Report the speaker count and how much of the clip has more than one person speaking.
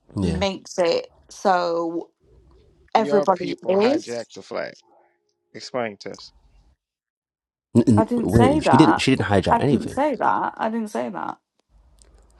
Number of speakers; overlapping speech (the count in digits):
3, about 22%